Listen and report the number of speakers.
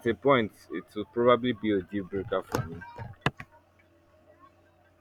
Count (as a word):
one